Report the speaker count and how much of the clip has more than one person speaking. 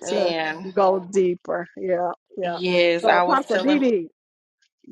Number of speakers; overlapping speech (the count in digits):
2, about 27%